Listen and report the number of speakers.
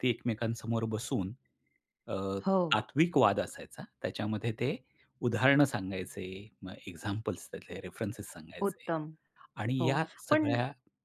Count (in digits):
2